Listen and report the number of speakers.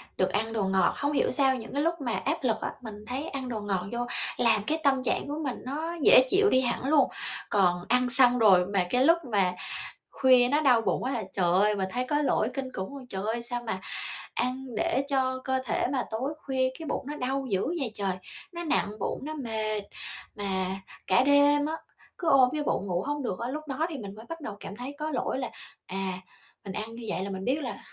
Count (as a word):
one